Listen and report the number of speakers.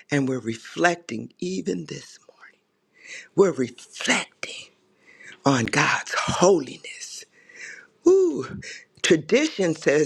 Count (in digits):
1